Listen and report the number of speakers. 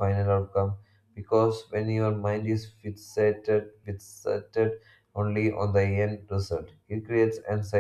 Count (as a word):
one